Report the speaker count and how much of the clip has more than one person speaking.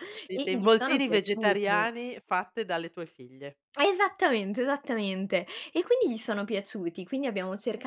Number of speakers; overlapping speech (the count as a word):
two, about 20%